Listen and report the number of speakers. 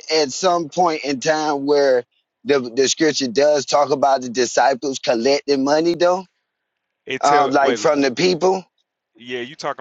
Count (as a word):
two